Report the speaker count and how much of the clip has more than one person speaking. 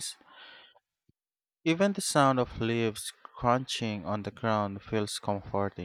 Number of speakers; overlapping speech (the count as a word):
one, no overlap